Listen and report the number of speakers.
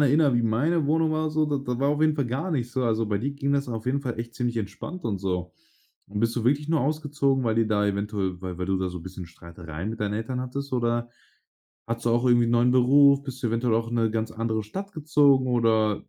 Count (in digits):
1